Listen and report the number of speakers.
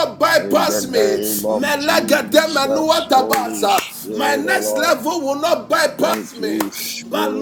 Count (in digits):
2